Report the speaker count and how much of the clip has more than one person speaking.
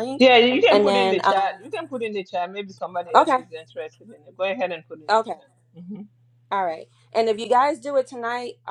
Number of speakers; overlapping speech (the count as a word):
two, about 16%